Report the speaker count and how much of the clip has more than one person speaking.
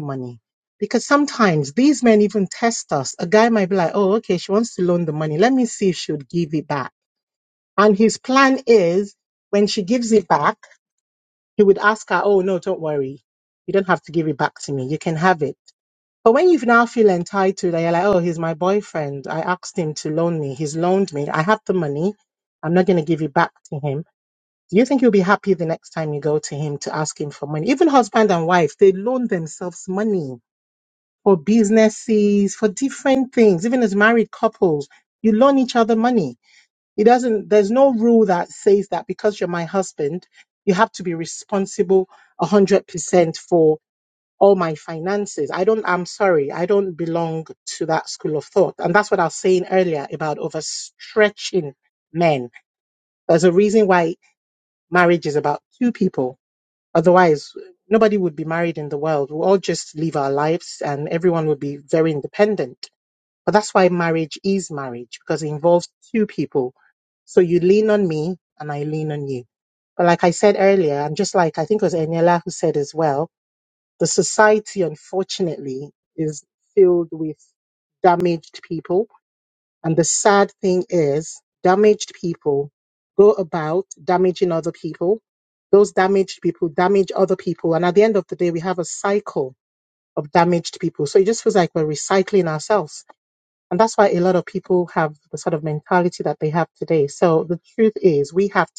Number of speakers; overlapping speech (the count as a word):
one, no overlap